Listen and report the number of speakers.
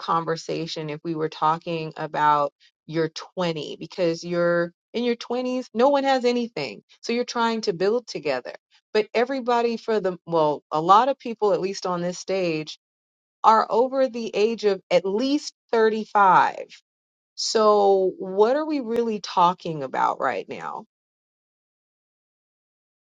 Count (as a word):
one